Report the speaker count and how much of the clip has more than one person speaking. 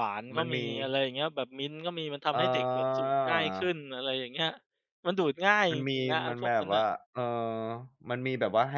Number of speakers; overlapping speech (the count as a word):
two, about 28%